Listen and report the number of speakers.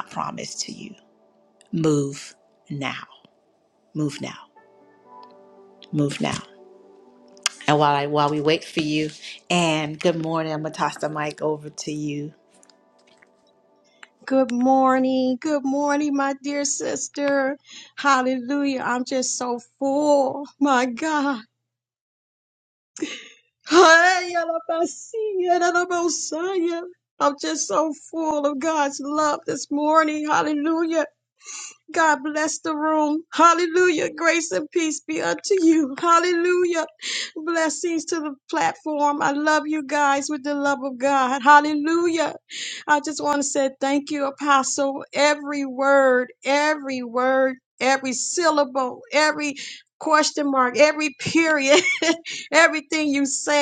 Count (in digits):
2